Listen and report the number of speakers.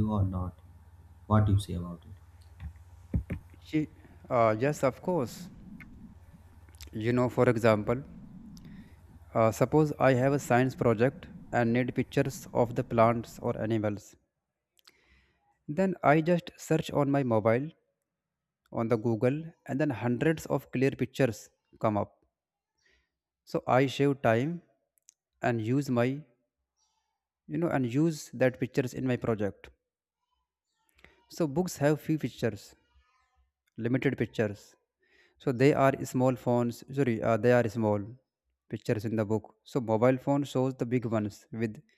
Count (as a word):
two